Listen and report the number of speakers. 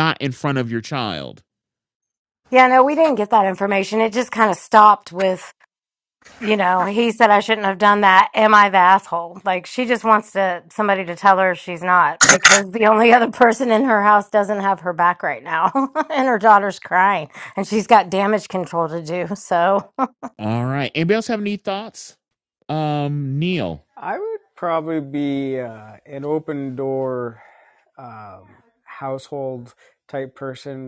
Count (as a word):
three